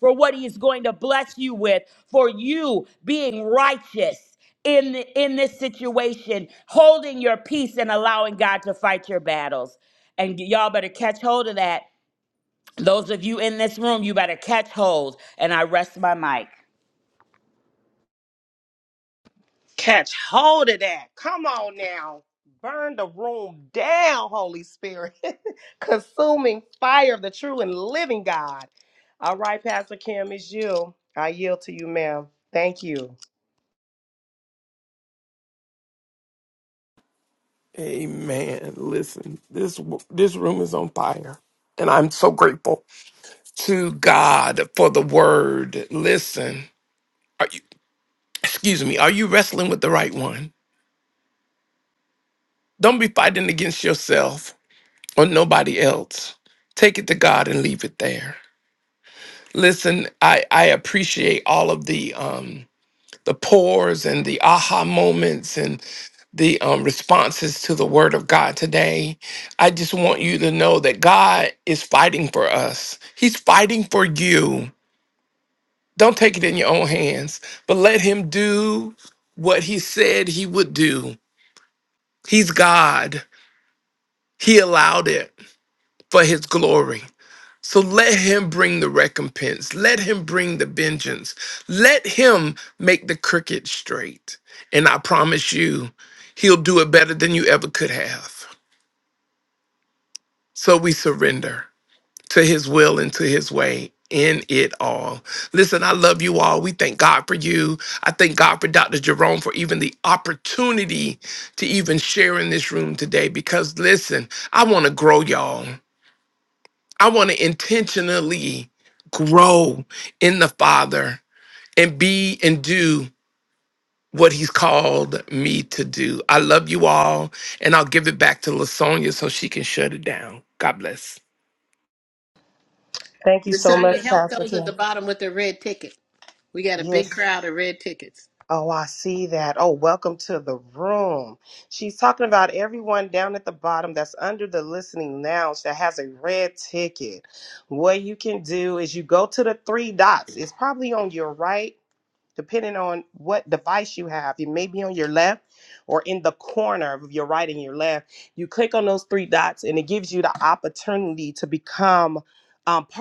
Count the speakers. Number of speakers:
four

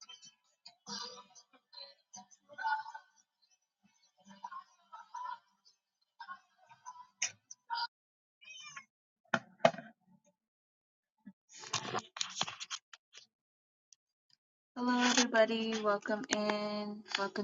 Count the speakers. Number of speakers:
one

